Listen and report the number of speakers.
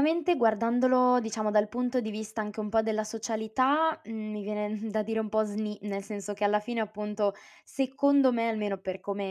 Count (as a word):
one